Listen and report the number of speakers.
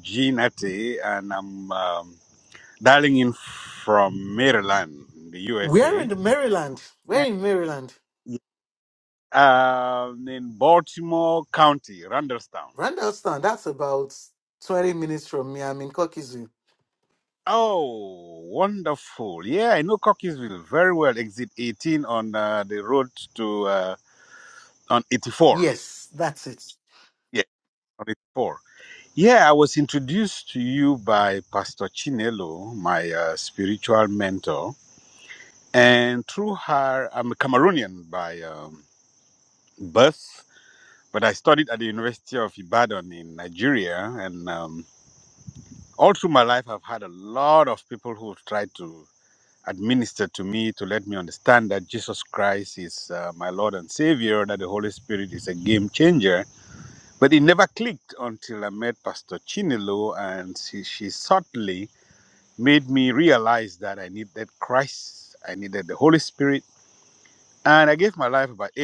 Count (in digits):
2